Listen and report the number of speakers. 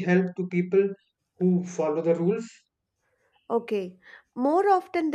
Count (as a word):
two